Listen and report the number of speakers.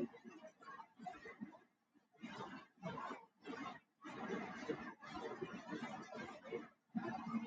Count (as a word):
zero